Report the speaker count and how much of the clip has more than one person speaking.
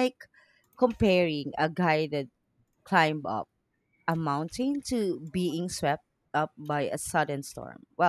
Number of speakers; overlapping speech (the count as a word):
one, no overlap